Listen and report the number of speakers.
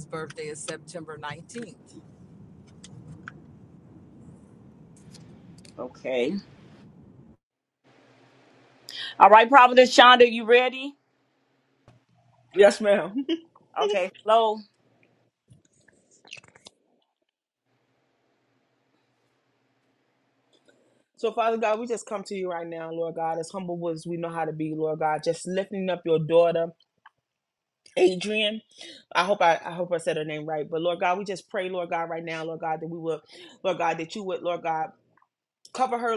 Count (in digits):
3